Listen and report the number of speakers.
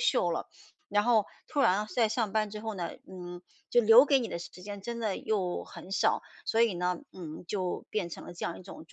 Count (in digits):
1